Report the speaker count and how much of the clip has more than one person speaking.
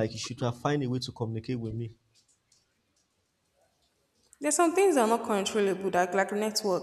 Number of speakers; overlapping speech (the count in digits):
2, no overlap